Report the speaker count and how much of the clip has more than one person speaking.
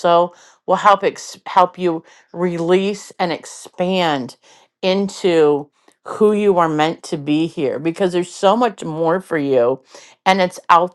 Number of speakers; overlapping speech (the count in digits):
1, no overlap